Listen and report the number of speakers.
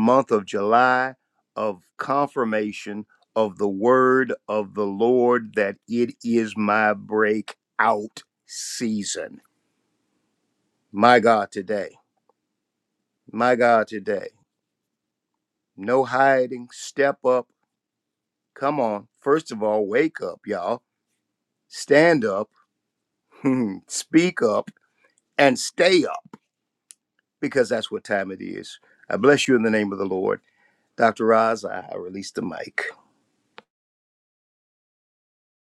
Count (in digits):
1